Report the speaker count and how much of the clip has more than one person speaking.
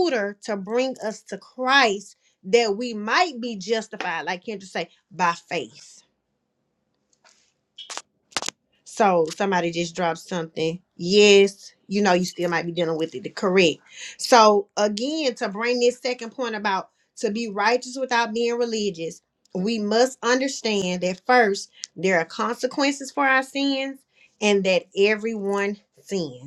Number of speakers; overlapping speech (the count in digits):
1, no overlap